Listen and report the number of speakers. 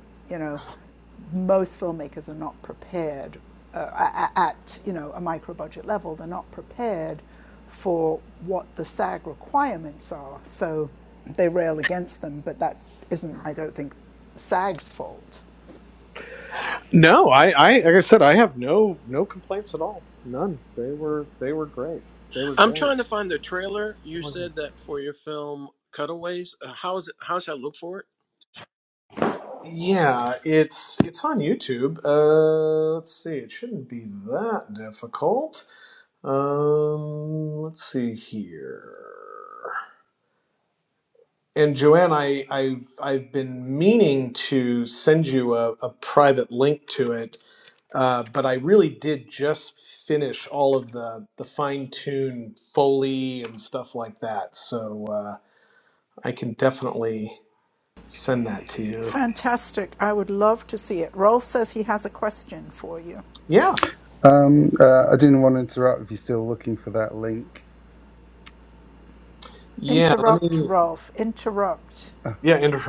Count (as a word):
four